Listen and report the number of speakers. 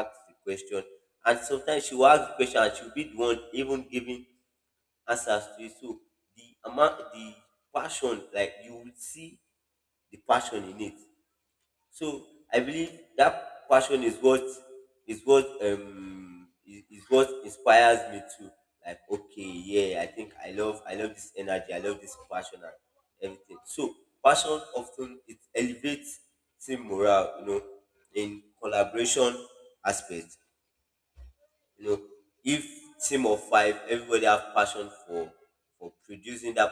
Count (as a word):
one